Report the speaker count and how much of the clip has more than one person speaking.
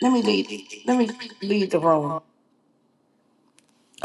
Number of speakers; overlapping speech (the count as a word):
one, no overlap